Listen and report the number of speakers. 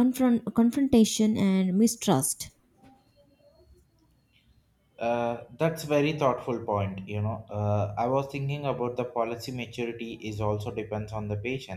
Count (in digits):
2